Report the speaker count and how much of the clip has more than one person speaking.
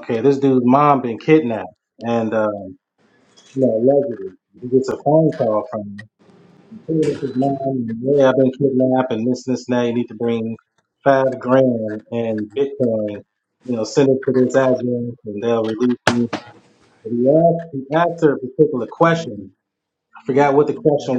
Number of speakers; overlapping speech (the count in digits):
1, no overlap